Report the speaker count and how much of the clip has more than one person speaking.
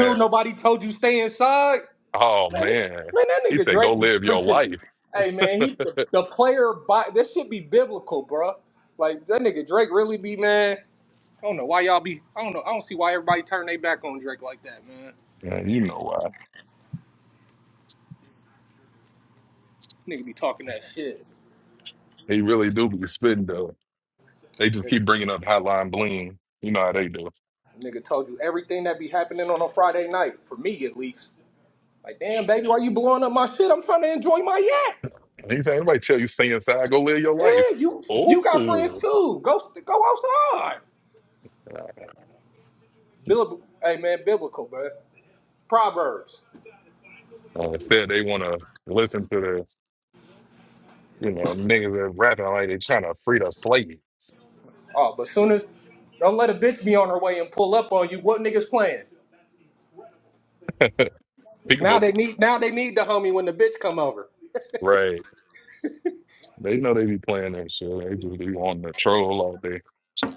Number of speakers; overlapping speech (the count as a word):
two, about 4%